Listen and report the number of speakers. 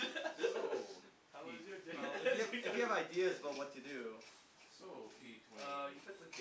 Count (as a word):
three